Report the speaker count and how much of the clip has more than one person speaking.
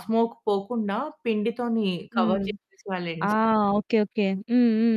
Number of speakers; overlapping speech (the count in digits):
2, about 10%